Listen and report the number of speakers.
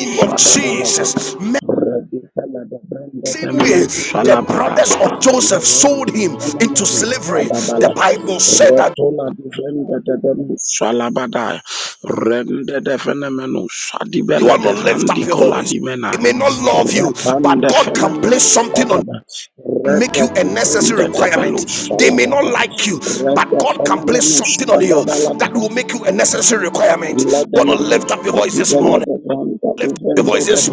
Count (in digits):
2